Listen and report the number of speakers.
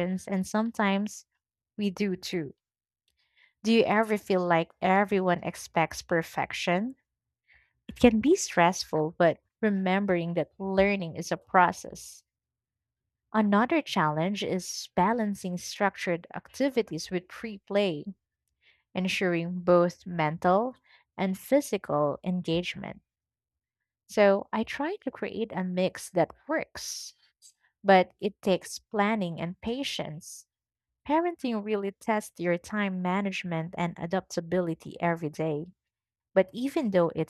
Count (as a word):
one